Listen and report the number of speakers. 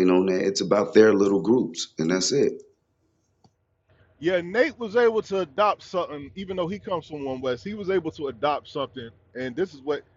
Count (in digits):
2